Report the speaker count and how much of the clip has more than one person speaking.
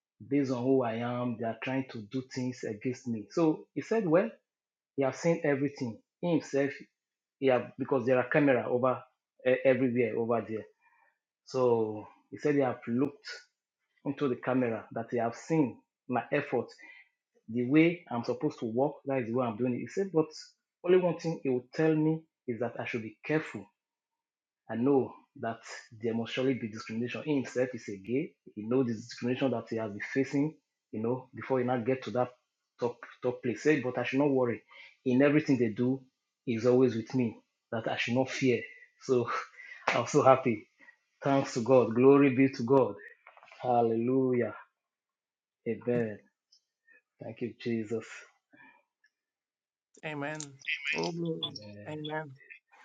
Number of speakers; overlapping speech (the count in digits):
2, no overlap